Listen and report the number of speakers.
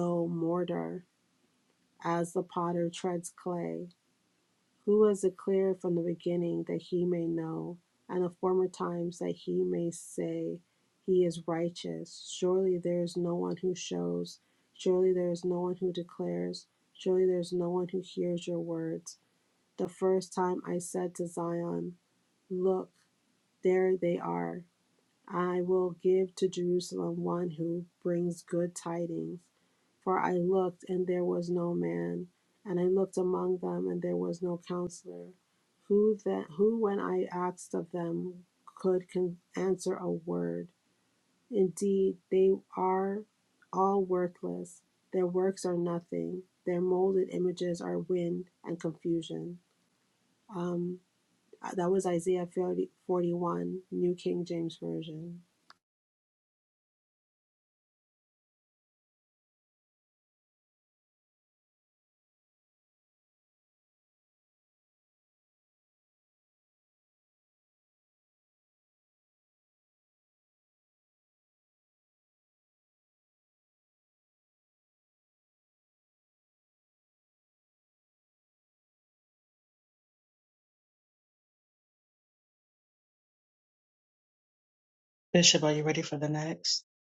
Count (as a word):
two